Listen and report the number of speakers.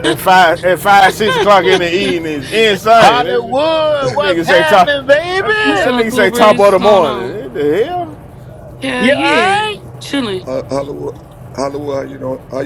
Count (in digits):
4